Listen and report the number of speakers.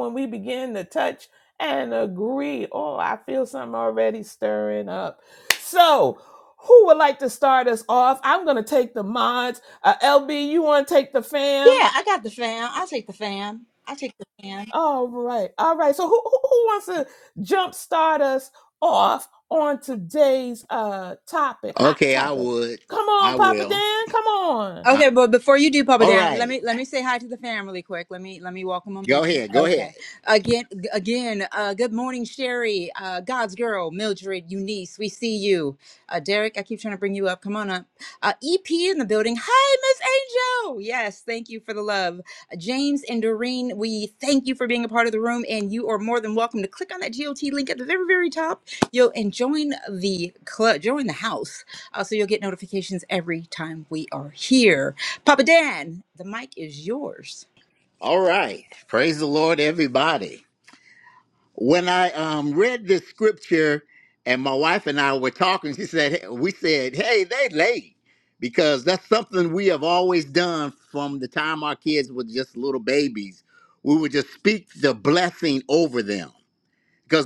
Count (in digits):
3